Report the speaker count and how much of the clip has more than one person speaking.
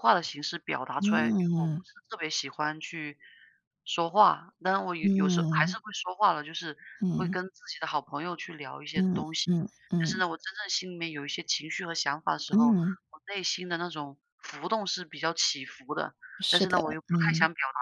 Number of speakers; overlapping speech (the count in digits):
2, about 21%